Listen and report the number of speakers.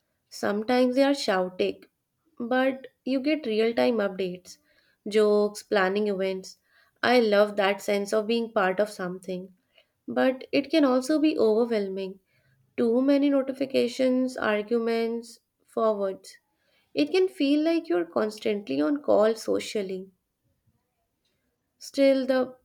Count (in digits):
1